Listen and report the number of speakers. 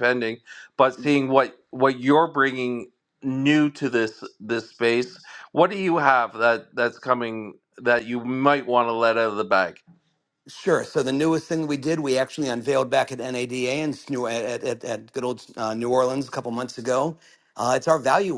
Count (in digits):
2